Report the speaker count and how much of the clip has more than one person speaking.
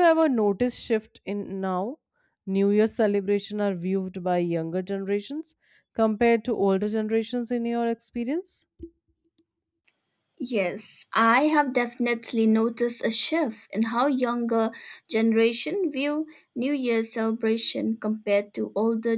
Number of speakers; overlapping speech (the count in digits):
2, no overlap